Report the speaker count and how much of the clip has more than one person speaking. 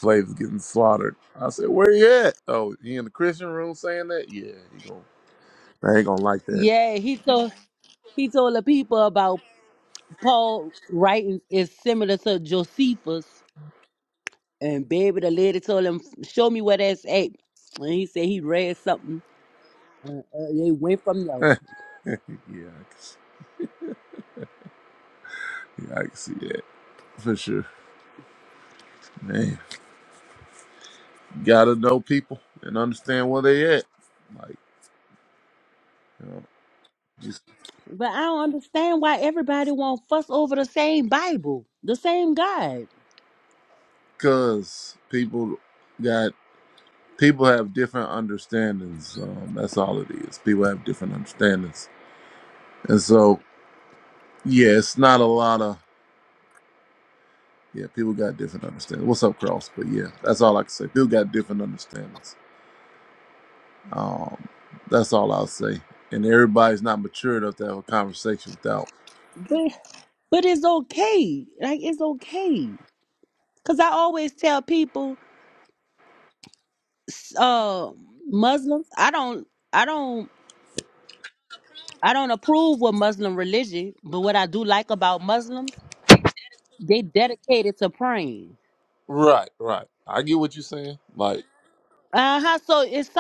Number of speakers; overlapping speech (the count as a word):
two, under 1%